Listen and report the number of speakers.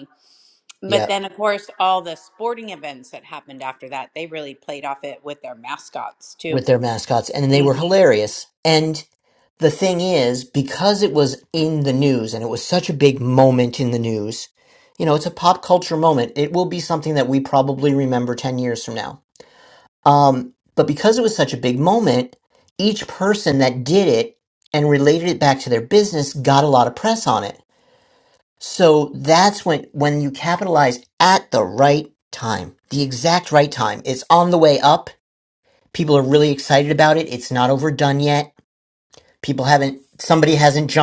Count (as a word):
two